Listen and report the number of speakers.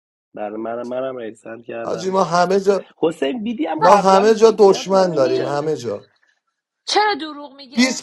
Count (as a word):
three